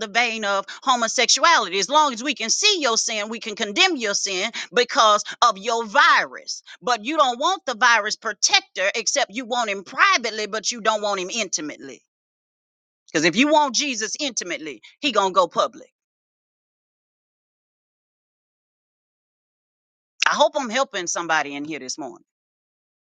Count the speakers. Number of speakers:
one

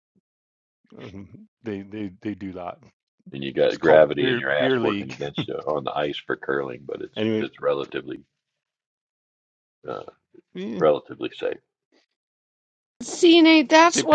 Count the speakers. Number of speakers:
three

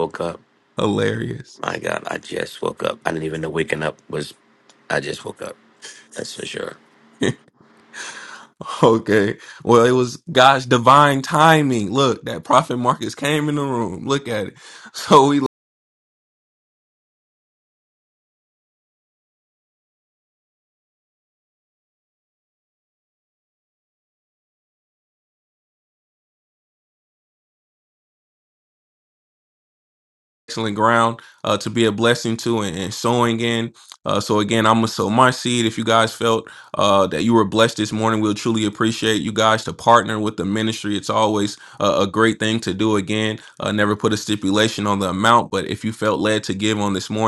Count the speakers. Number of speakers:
two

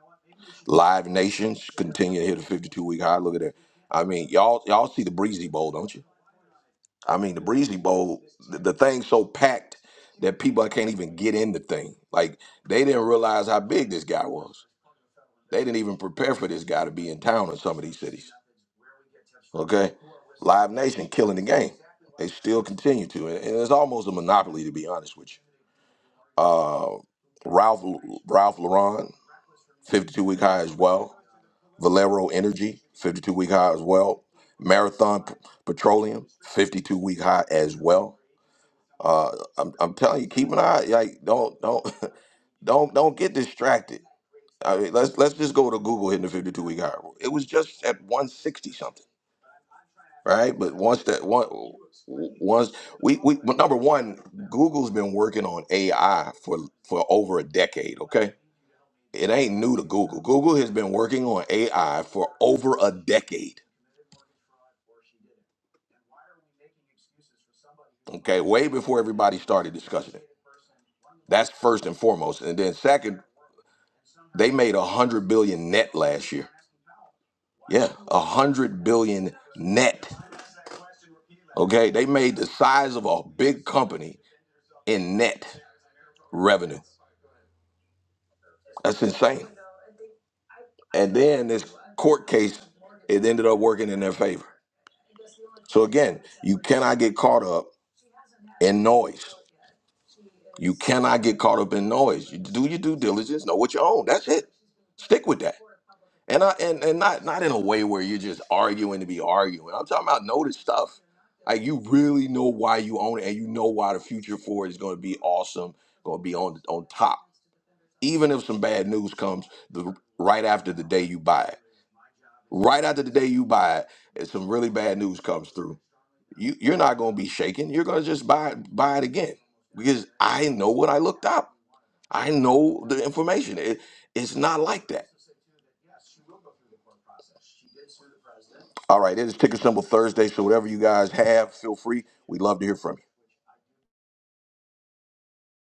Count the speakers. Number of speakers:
one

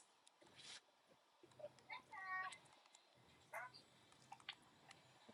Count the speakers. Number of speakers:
zero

